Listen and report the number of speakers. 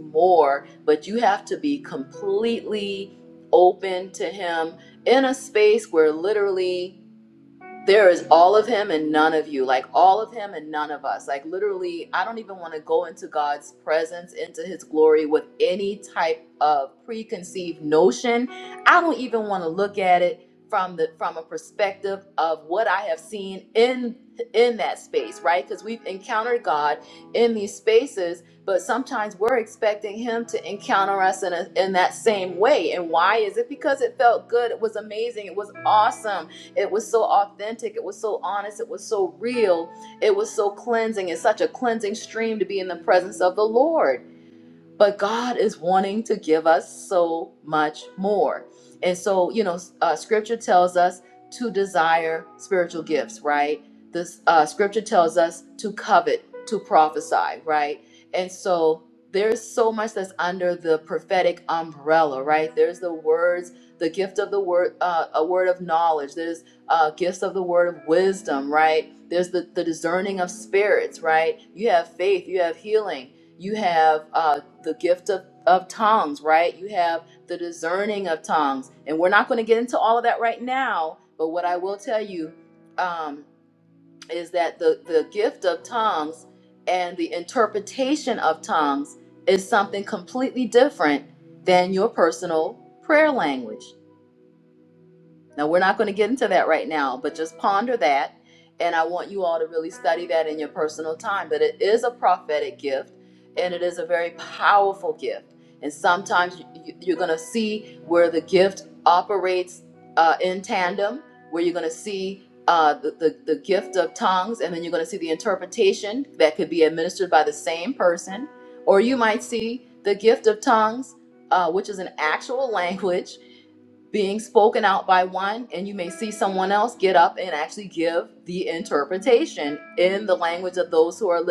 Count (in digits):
1